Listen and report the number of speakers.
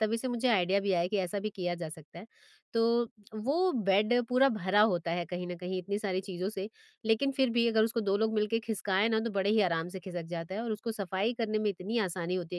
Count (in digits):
1